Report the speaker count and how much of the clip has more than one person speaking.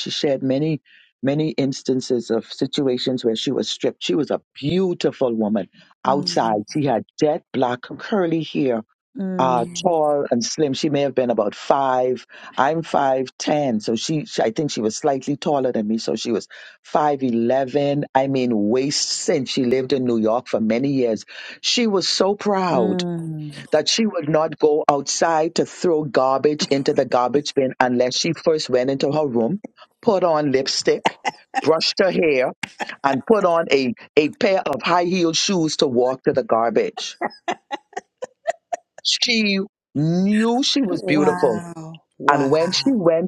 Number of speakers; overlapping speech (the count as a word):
two, about 6%